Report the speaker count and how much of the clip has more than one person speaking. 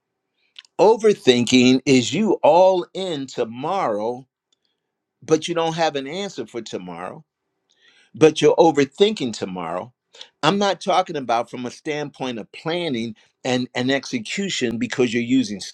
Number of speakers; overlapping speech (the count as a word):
one, no overlap